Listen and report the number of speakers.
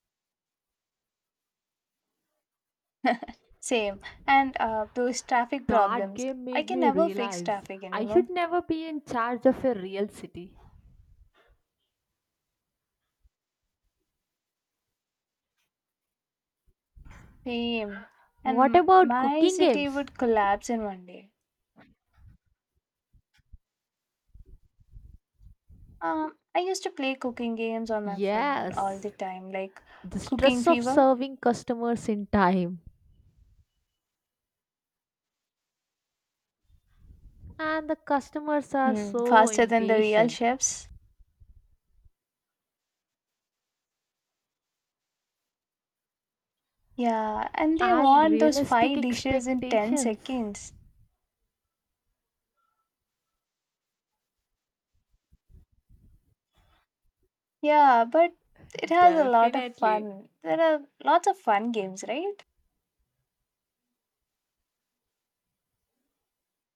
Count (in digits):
2